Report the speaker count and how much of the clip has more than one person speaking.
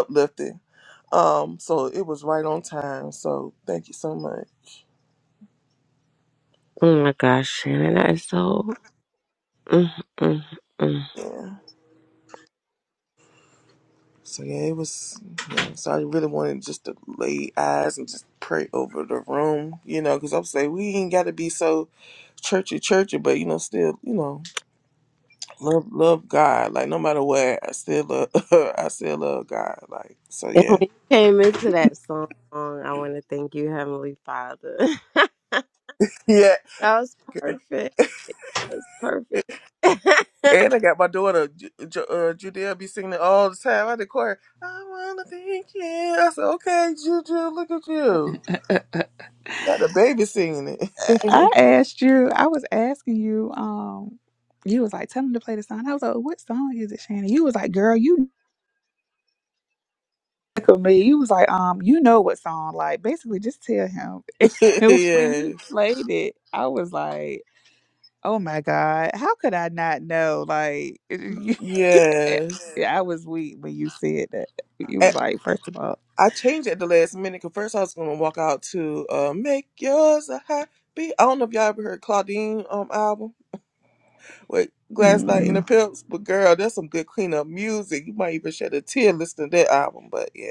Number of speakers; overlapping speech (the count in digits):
3, about 2%